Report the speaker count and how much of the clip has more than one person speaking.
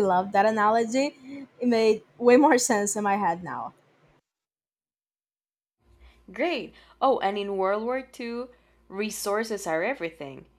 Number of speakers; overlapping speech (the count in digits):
2, no overlap